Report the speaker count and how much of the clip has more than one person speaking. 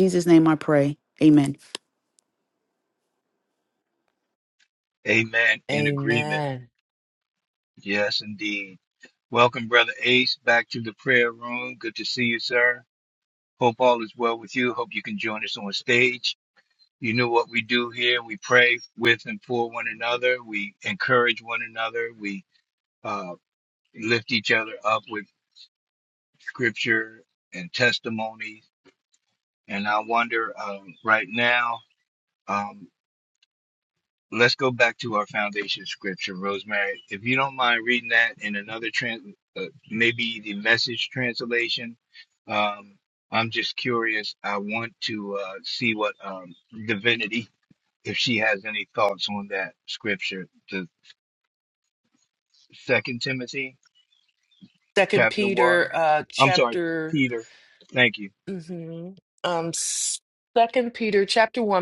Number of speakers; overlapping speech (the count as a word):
three, about 3%